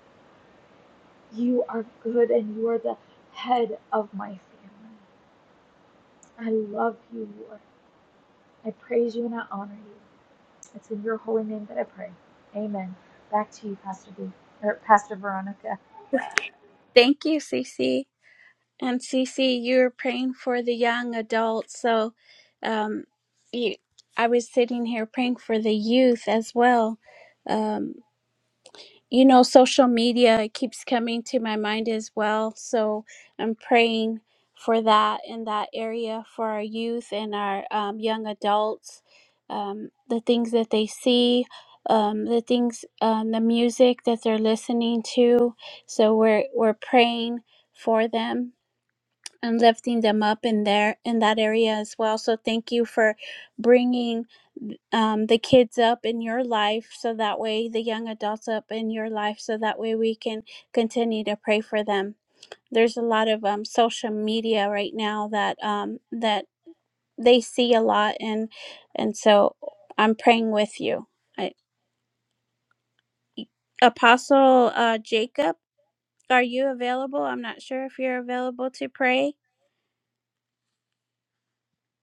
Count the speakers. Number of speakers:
two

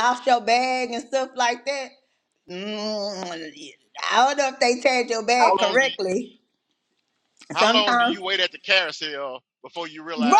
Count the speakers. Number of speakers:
two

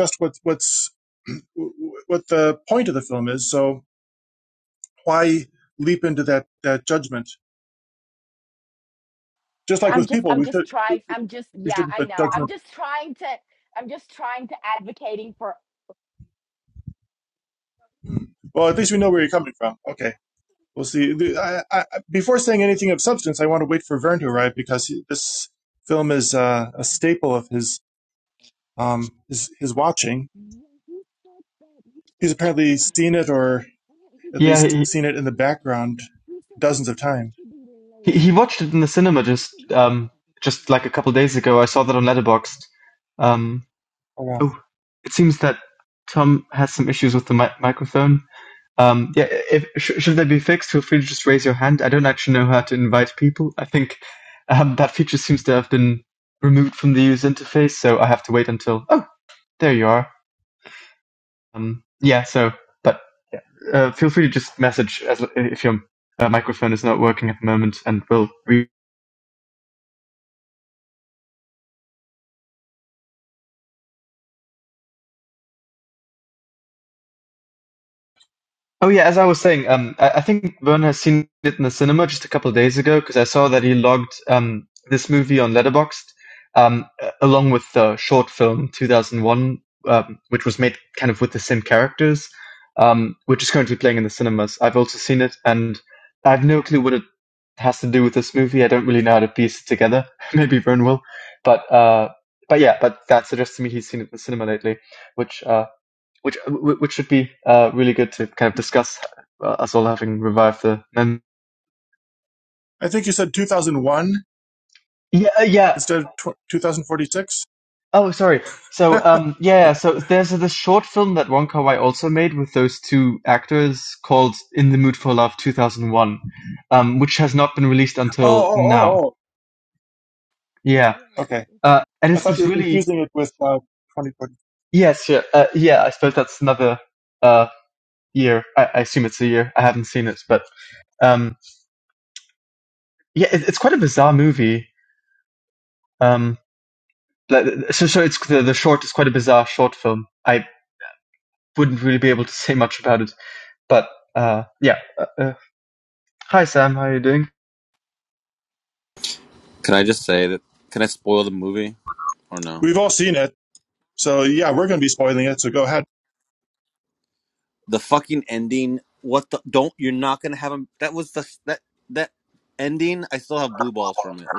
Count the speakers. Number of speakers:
four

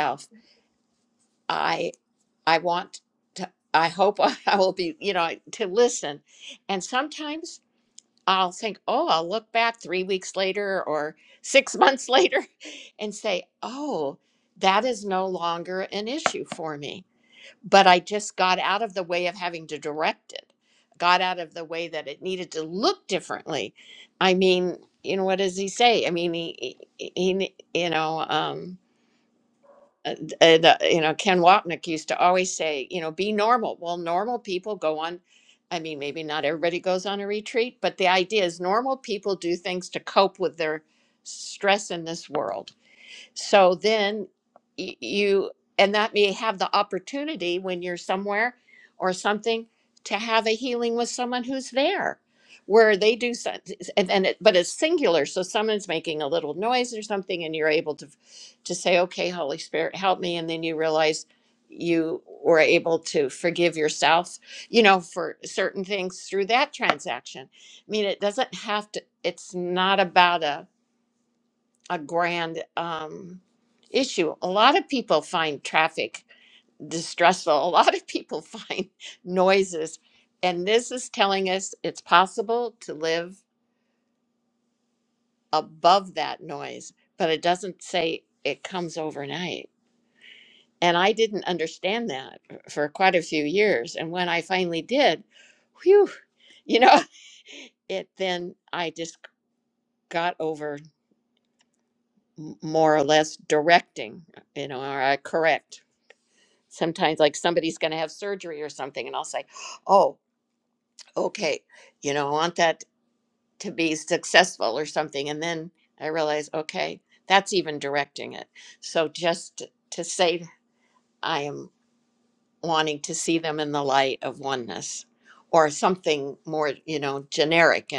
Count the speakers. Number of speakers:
one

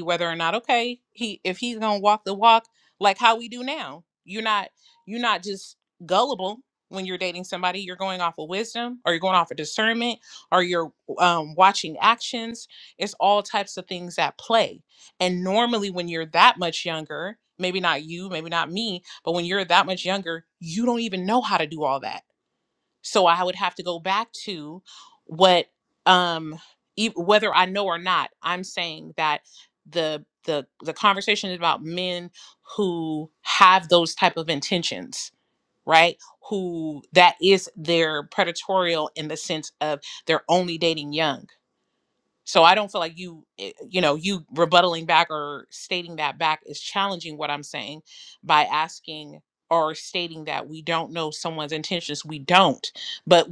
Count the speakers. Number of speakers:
one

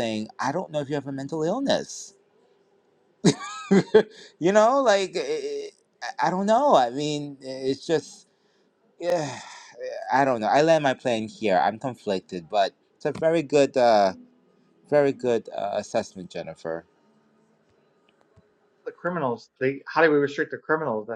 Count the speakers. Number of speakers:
two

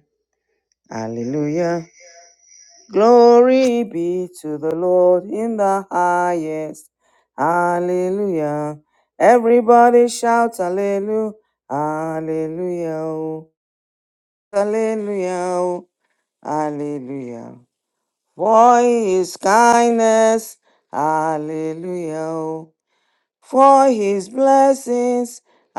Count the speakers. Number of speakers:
one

